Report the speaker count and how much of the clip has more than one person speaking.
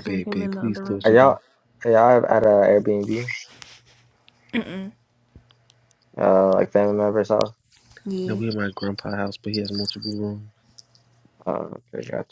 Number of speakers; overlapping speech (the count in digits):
3, about 12%